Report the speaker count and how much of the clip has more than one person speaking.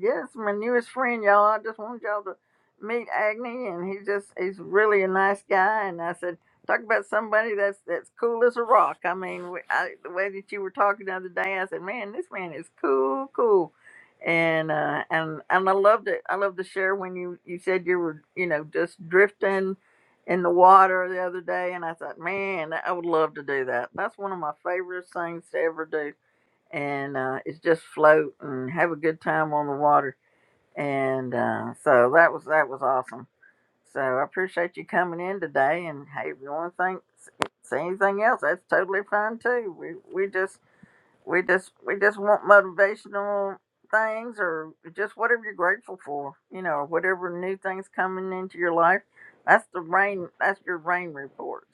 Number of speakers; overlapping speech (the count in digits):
1, no overlap